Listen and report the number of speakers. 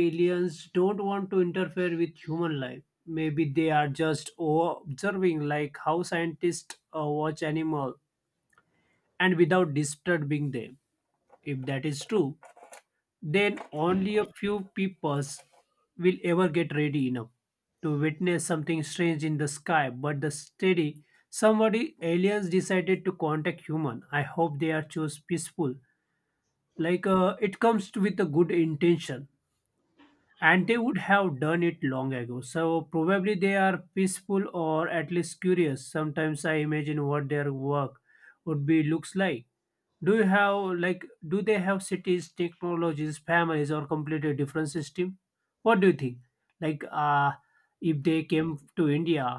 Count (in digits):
1